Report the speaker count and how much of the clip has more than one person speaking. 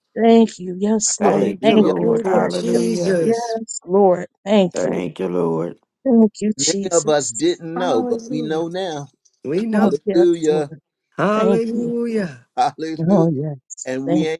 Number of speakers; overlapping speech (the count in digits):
4, about 41%